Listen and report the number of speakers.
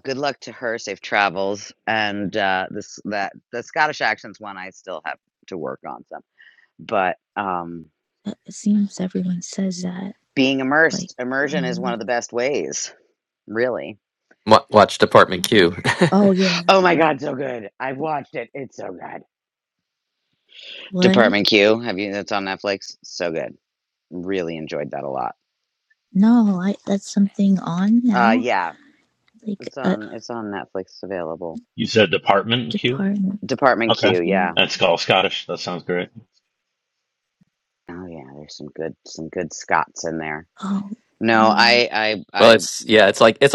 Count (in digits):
4